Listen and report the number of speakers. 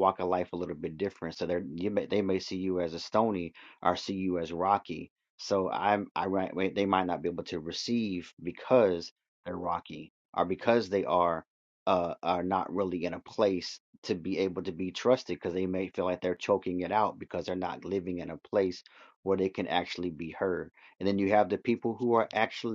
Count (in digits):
1